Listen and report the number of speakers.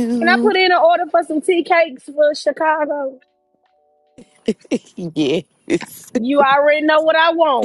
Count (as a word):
two